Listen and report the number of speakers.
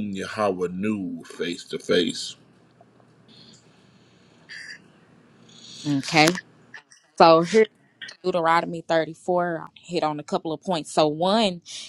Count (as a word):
two